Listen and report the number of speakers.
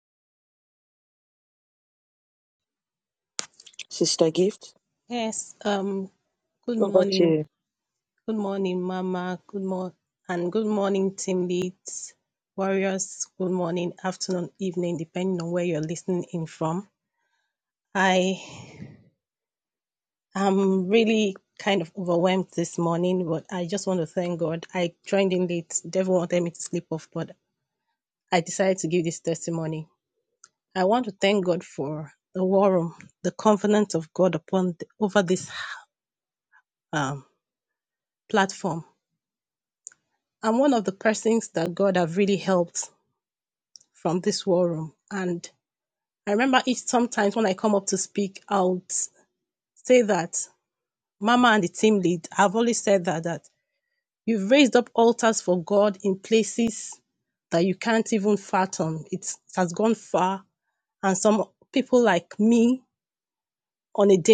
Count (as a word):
two